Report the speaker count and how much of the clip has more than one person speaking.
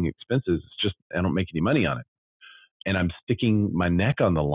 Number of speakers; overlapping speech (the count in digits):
1, no overlap